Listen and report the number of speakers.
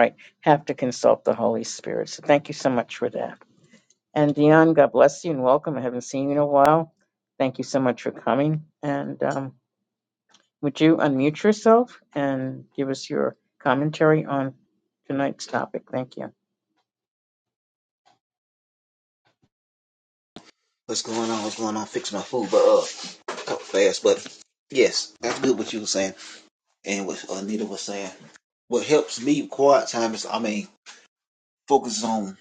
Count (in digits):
2